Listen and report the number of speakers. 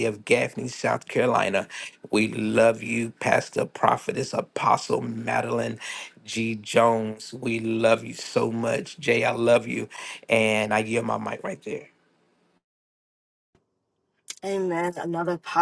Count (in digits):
2